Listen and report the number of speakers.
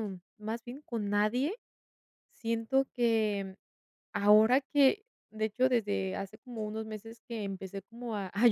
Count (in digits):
1